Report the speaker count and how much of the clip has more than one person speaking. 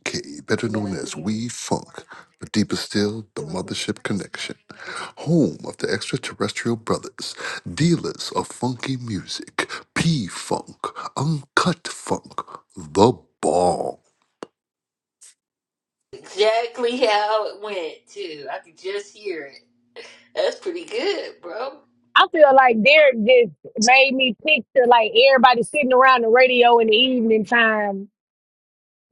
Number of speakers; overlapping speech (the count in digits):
3, no overlap